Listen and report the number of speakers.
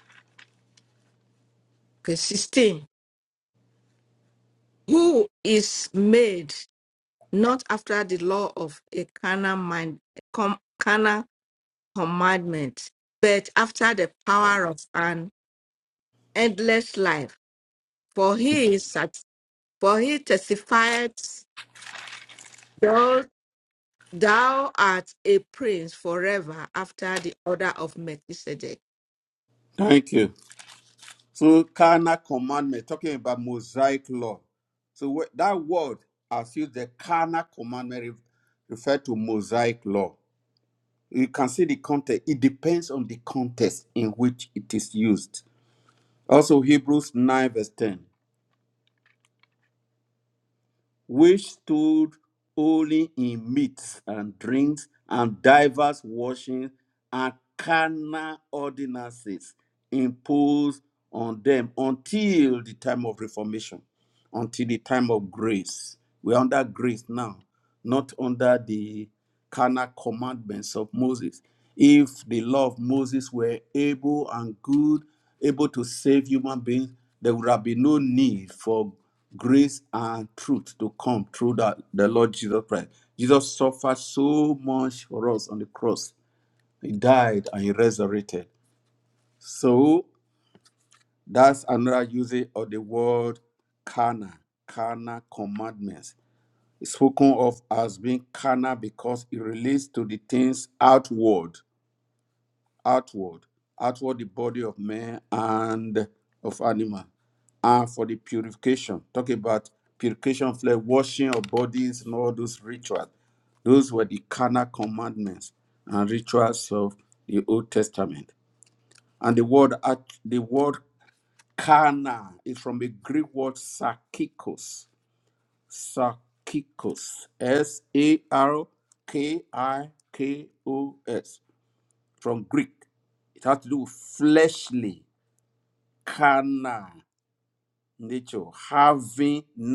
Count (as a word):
two